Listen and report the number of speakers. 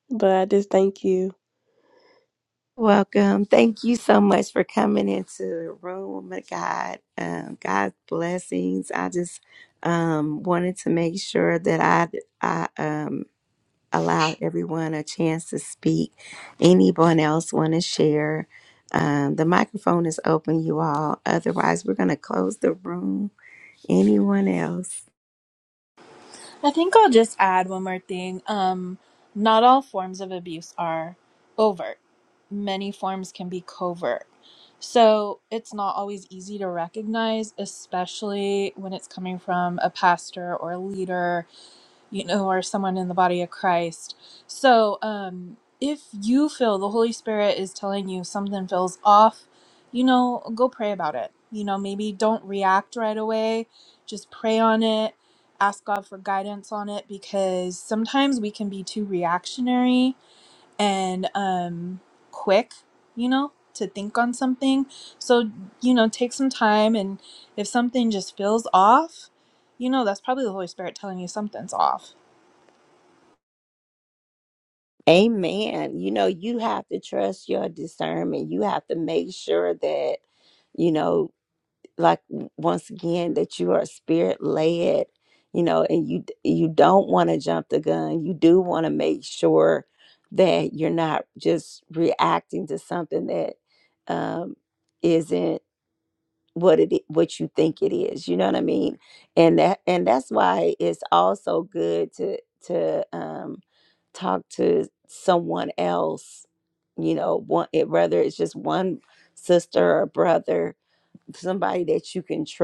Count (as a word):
three